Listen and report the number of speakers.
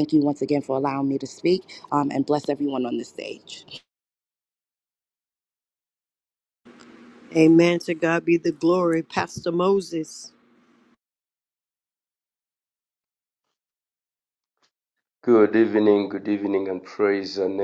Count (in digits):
3